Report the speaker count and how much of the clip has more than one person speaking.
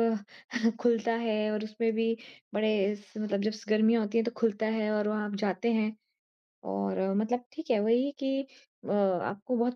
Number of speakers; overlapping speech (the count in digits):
1, no overlap